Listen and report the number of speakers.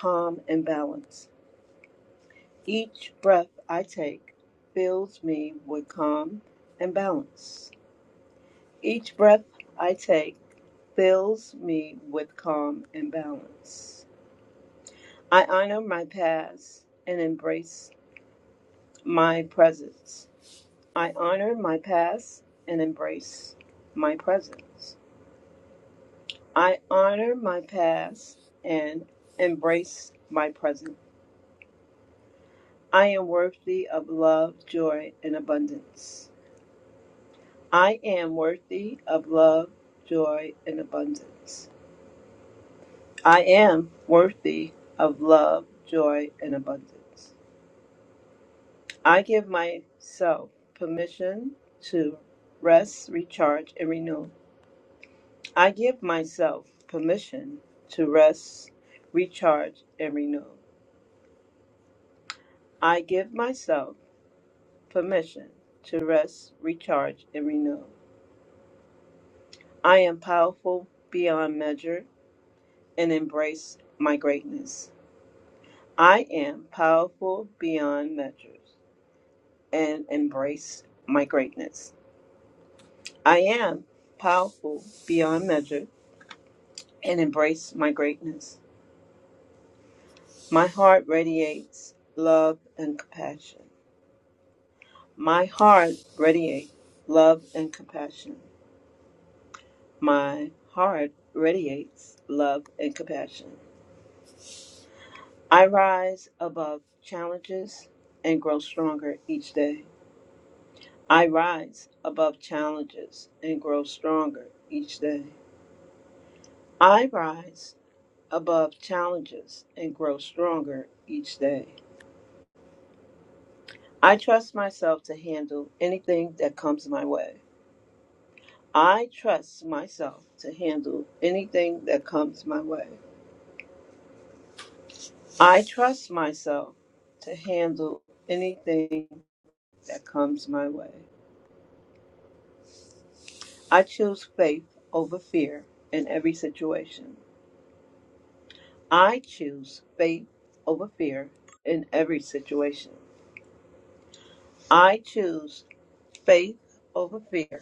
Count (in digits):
1